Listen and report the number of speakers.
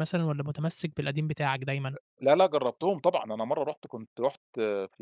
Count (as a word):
two